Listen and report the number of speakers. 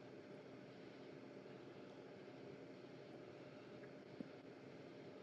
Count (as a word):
zero